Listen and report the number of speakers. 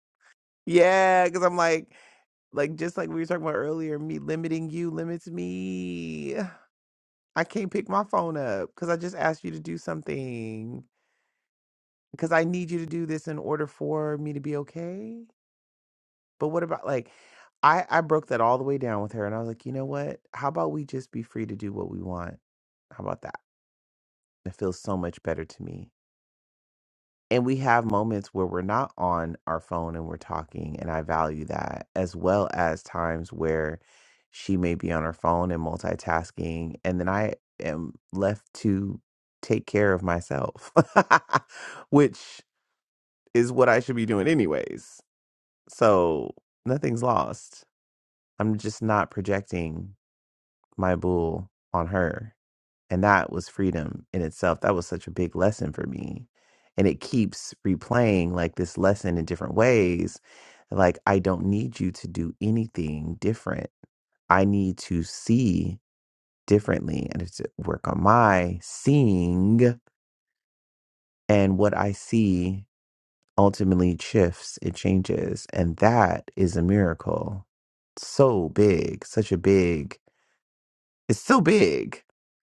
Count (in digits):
1